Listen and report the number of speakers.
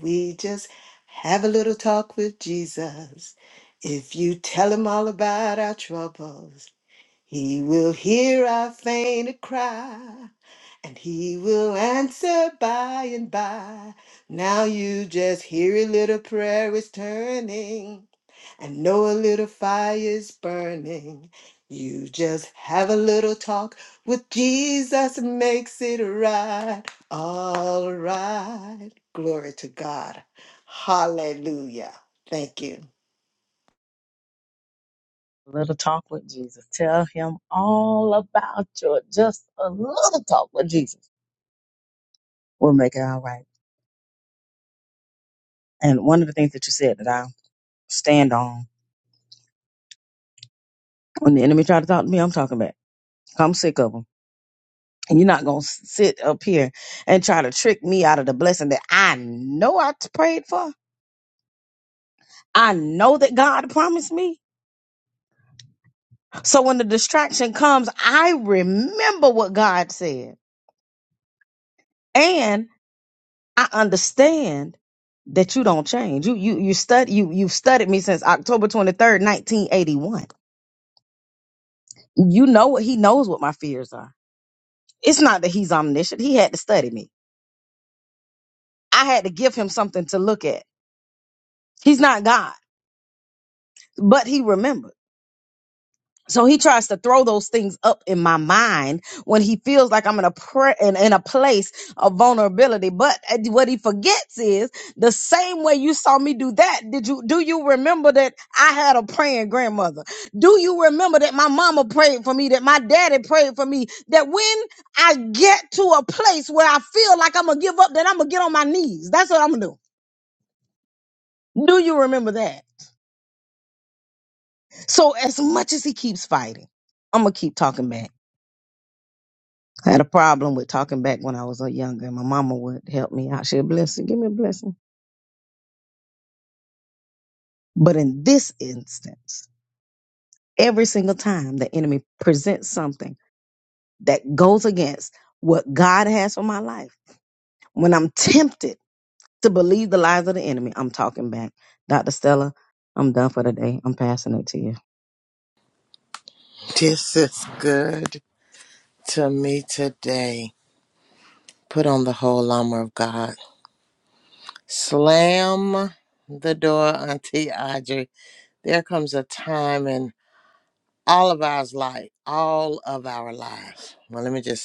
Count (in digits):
3